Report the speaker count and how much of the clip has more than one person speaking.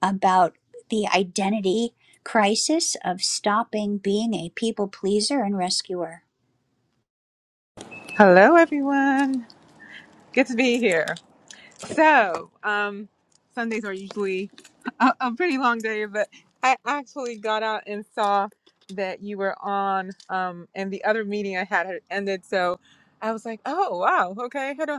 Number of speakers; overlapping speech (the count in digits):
2, no overlap